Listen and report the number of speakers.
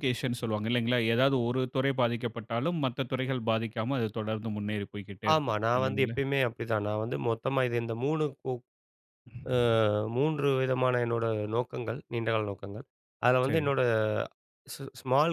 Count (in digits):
2